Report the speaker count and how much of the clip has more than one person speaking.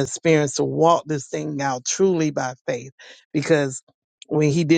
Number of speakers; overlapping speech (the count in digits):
1, no overlap